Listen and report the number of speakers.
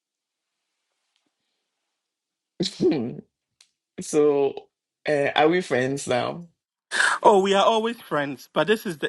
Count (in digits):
2